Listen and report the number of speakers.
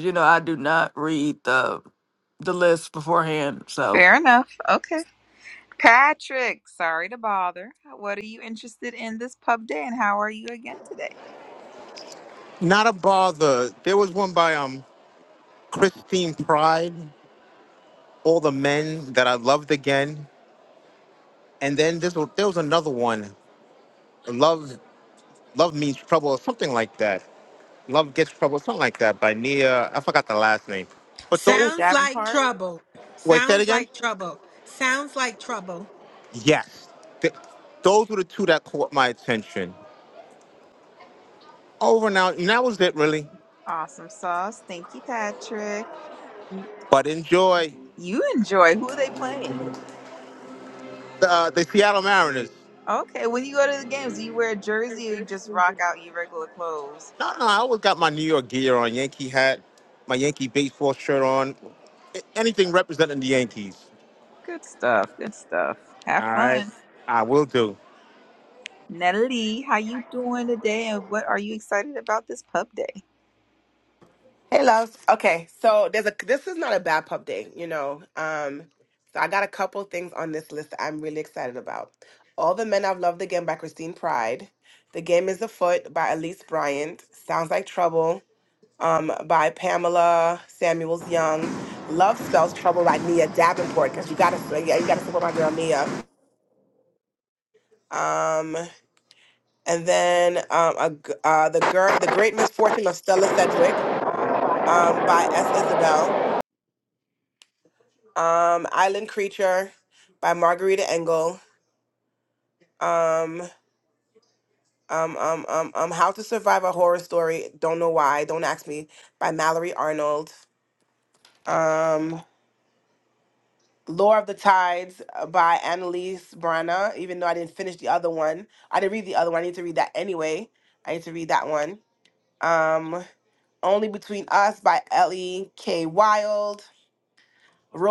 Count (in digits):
5